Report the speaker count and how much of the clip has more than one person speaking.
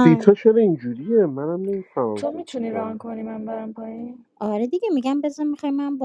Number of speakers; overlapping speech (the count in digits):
3, about 12%